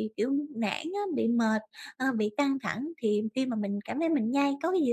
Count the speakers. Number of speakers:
one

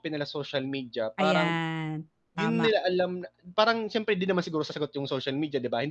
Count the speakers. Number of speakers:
two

